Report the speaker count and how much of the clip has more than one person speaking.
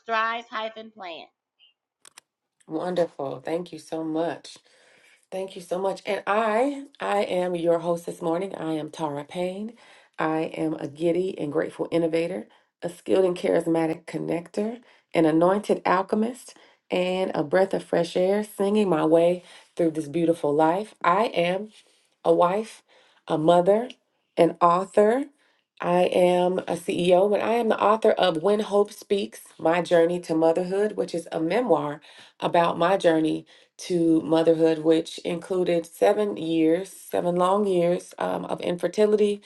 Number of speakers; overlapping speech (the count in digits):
2, no overlap